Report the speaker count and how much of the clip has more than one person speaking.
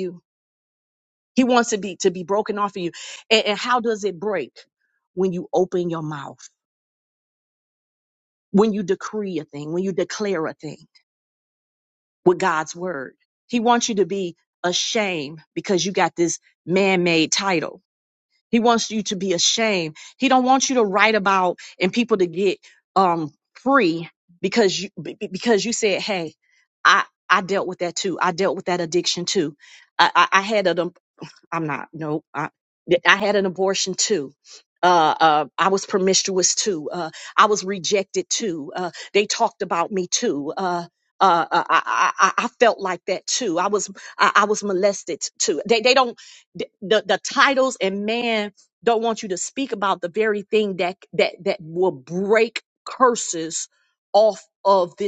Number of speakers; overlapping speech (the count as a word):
one, no overlap